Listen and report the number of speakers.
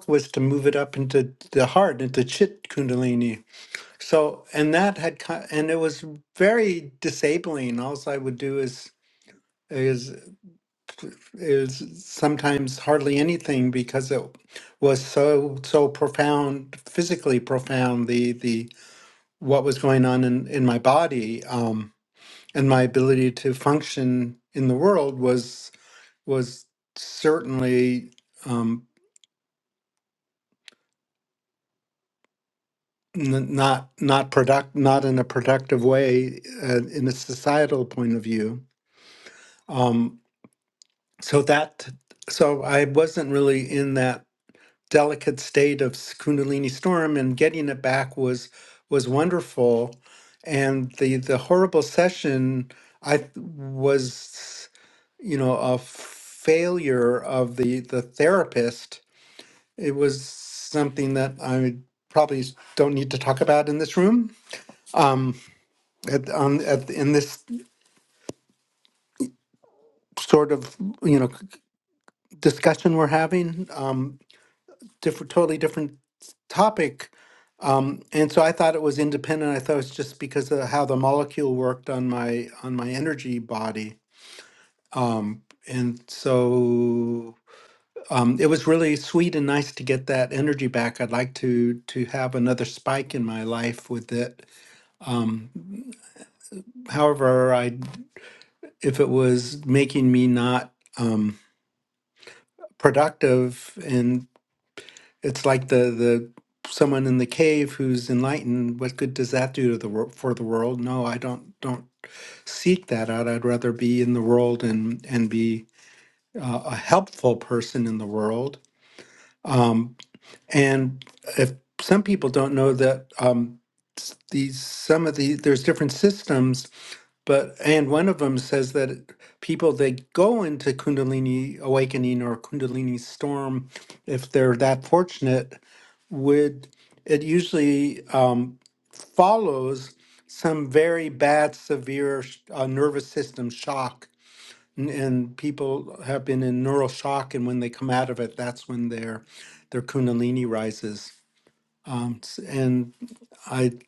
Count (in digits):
1